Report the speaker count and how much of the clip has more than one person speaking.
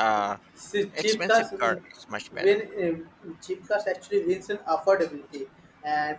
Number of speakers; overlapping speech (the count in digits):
2, about 21%